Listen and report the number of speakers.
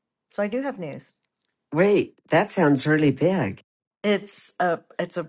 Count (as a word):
two